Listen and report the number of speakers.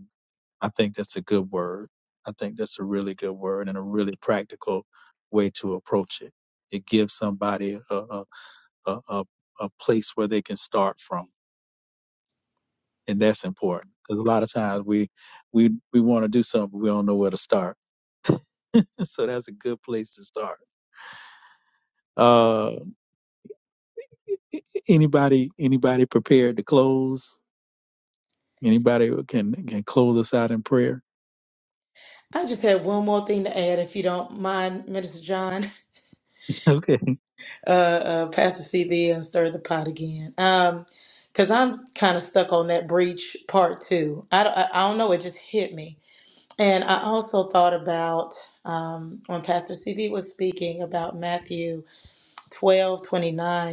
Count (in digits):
2